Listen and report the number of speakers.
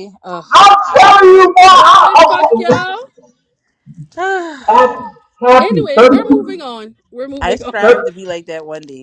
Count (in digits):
3